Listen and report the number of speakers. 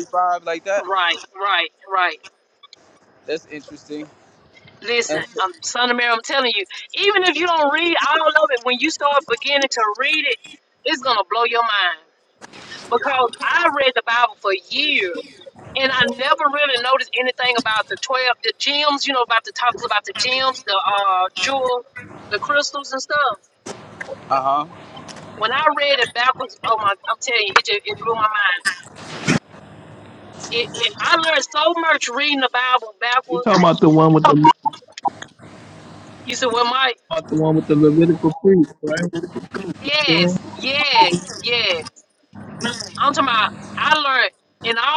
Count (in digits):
3